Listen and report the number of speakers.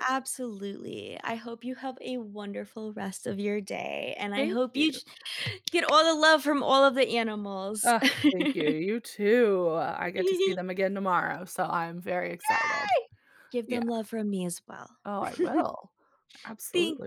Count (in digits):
2